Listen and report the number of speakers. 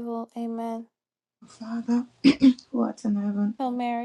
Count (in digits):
2